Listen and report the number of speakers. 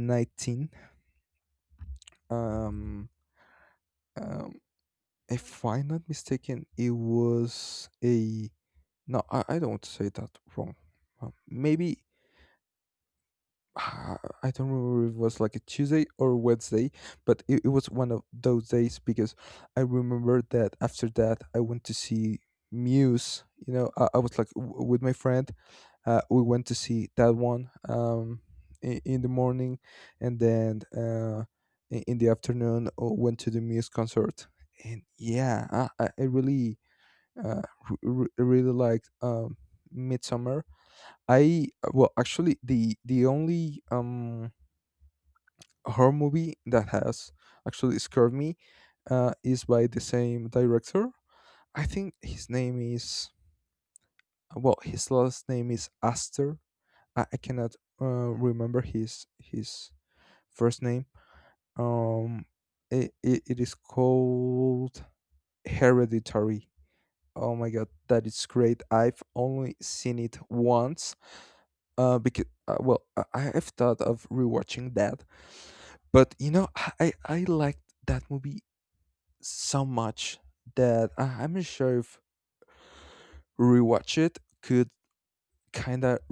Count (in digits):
1